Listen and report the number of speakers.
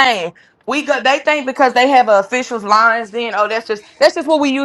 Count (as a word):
one